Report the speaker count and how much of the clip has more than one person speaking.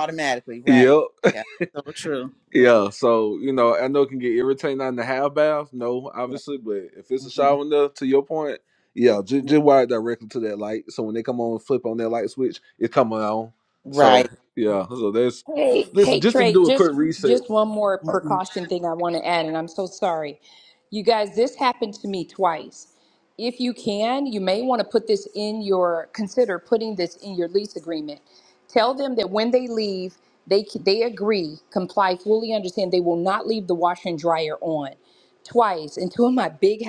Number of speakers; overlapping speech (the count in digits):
3, about 7%